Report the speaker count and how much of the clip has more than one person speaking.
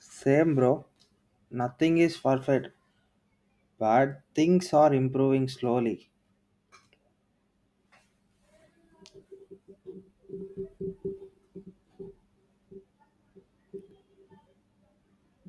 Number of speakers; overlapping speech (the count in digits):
1, no overlap